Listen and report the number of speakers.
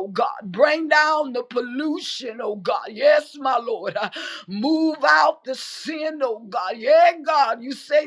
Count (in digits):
1